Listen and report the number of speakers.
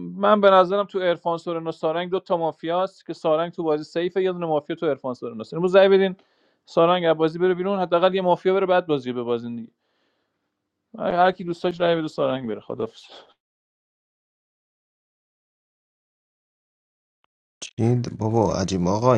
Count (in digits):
2